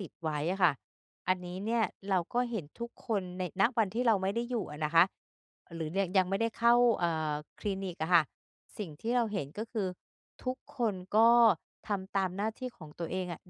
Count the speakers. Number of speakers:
1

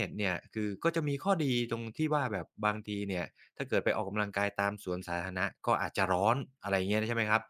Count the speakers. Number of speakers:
1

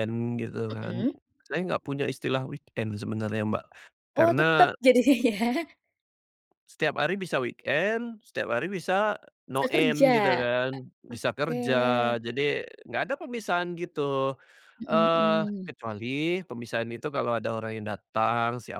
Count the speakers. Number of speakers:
2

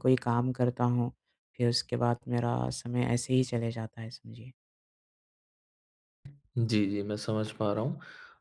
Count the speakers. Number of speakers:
2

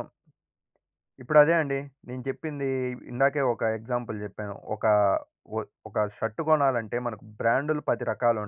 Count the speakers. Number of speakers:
1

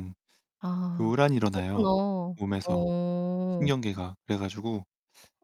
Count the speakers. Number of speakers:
2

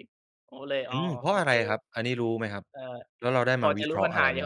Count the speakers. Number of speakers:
2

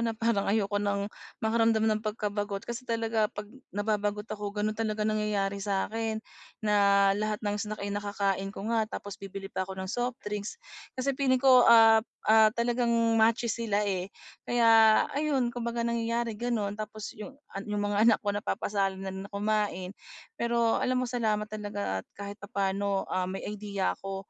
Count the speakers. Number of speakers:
1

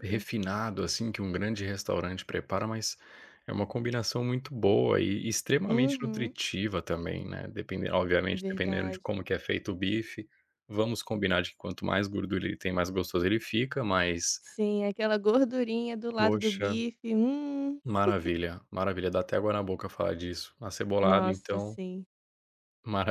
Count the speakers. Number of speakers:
2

